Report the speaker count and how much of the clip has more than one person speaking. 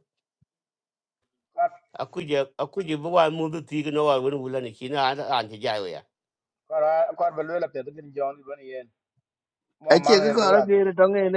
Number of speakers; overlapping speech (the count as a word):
three, about 8%